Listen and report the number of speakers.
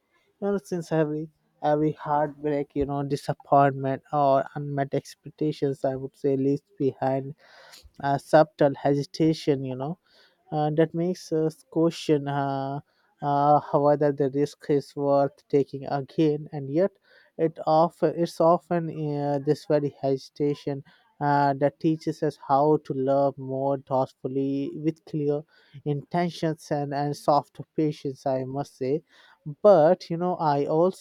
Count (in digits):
1